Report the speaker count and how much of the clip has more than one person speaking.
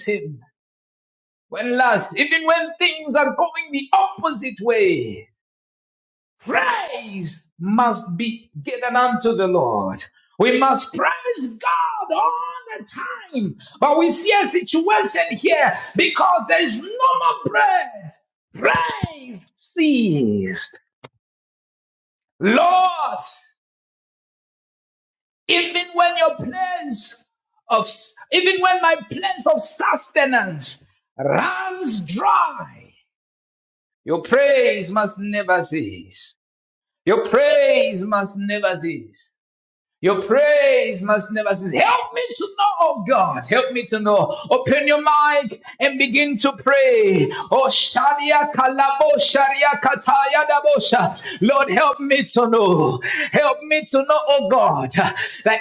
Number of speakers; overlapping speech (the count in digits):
1, no overlap